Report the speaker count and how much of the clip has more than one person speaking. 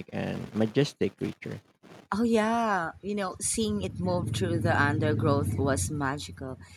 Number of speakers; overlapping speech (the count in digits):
2, no overlap